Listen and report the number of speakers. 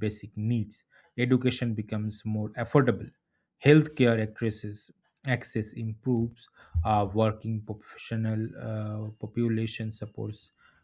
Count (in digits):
1